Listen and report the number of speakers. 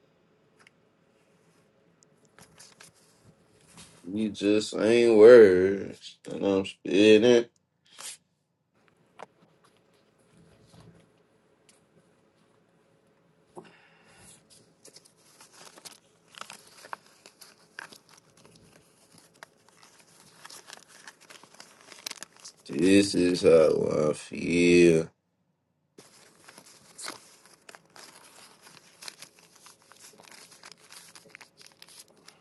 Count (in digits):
1